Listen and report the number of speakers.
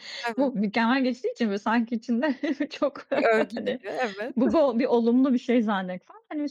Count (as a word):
two